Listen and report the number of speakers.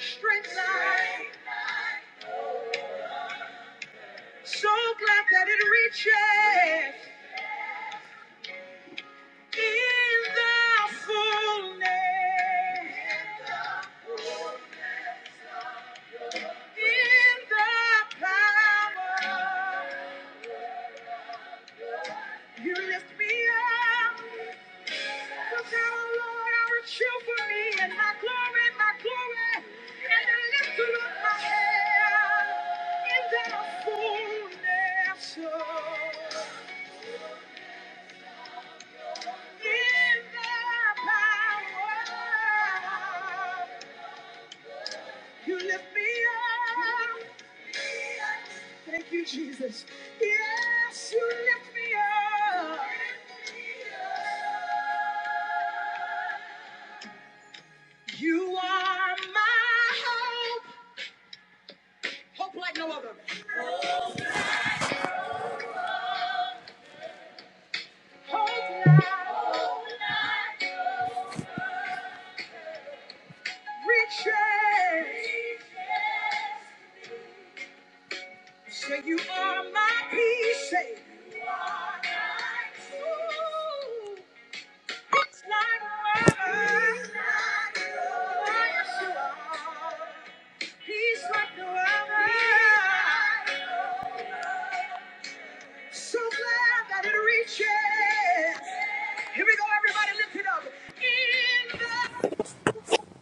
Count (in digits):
1